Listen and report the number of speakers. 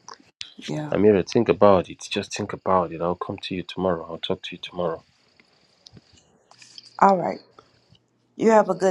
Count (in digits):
2